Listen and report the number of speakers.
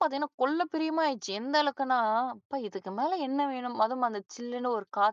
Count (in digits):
1